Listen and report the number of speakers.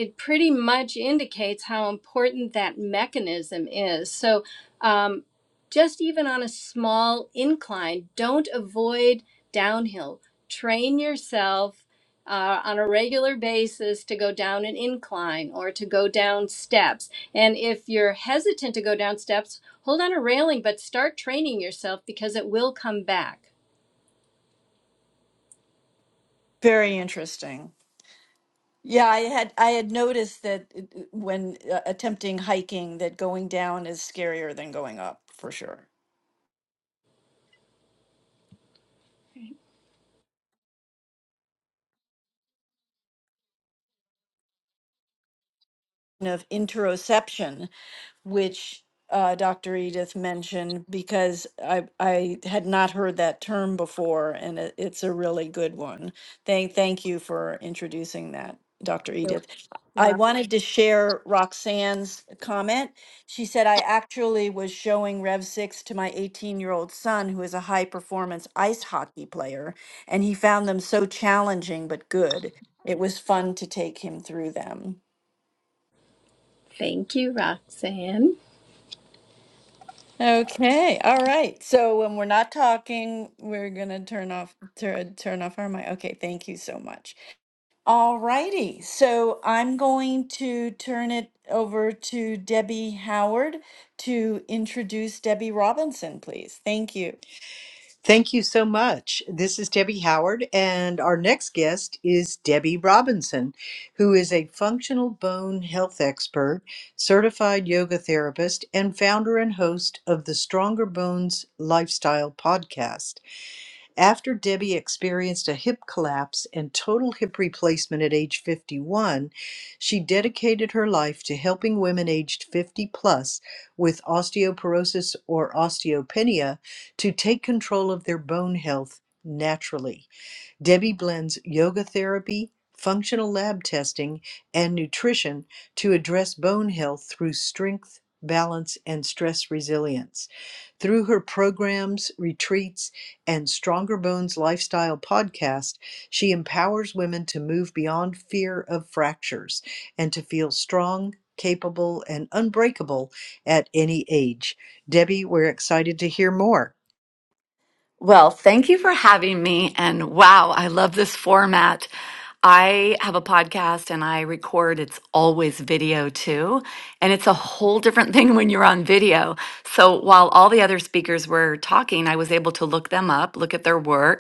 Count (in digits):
4